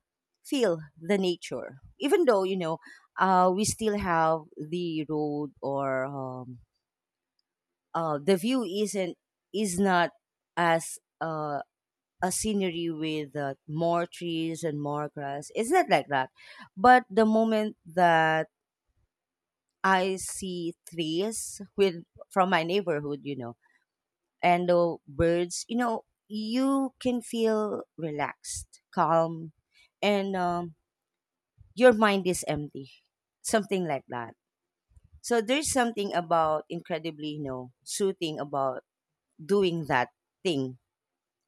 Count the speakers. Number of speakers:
one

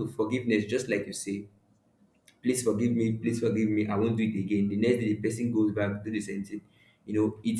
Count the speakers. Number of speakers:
one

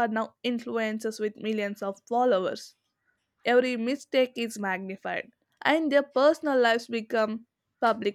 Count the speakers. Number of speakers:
one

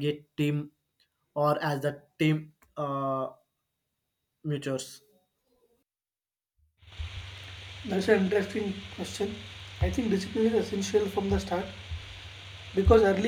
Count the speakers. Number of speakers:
two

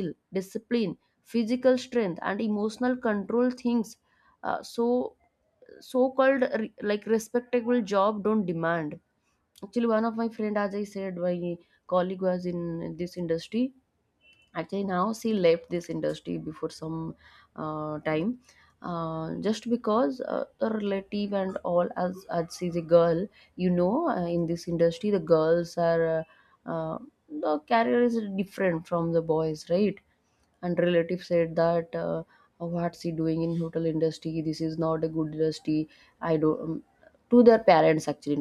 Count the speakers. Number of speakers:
one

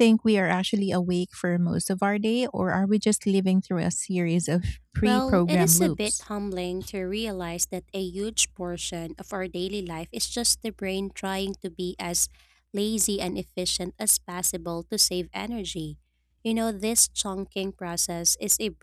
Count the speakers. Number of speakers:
two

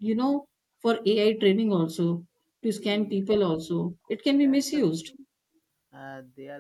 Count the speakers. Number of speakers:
two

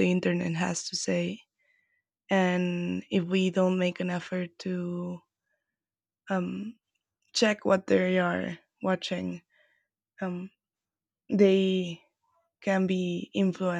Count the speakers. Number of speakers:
one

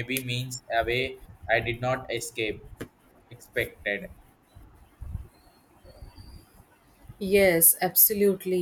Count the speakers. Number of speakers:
two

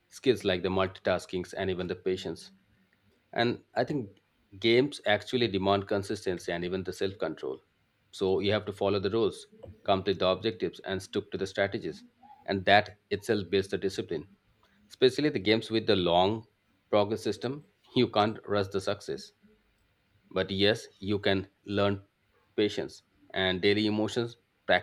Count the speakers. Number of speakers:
one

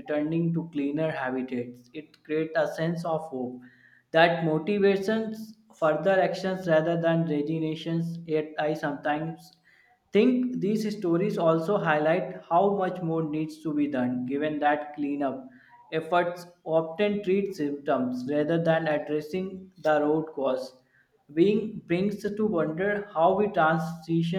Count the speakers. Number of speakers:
one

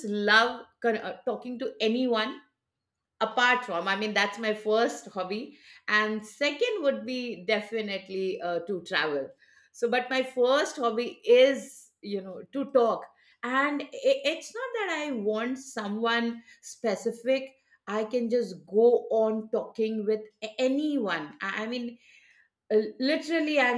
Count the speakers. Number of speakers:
one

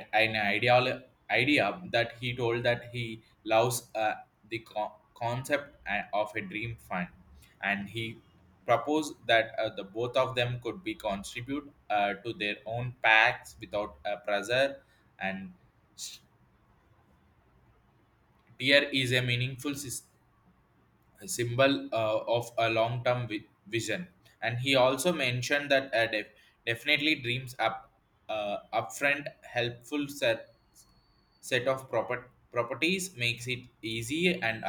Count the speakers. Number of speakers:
one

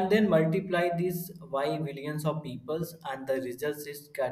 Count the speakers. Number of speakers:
one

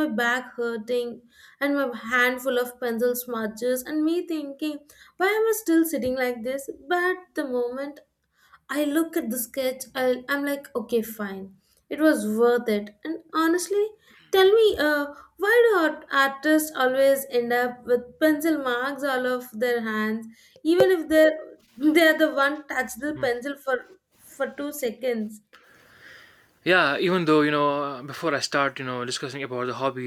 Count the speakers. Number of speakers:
two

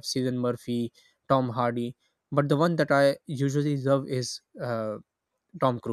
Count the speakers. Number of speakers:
one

